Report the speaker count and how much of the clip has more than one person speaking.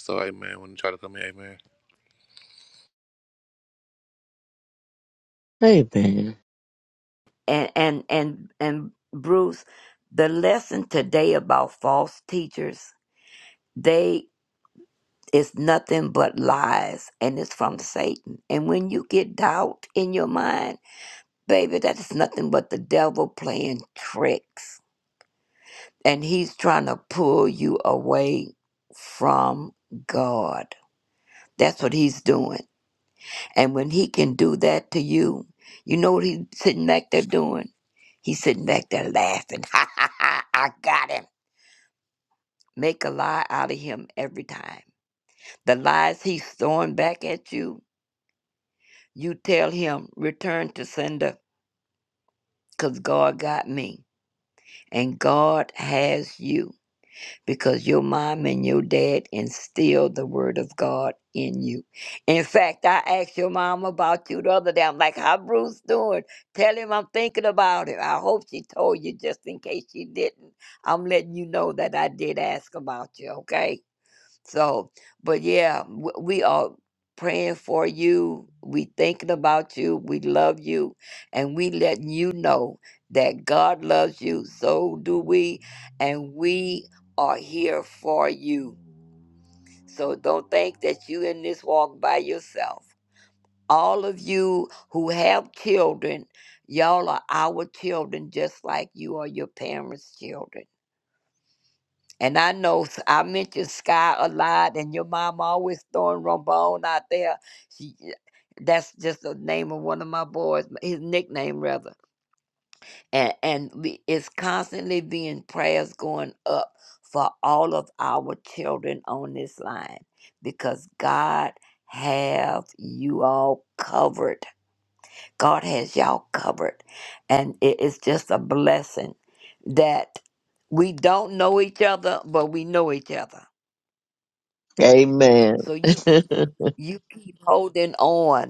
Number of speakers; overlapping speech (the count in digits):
3, under 1%